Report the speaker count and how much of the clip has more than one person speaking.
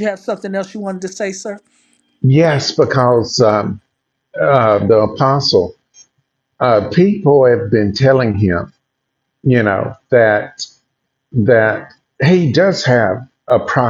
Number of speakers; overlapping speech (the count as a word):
two, no overlap